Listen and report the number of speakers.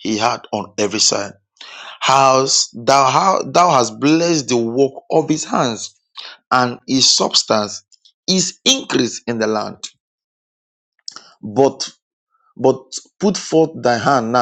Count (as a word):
one